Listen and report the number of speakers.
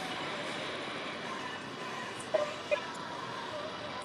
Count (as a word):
zero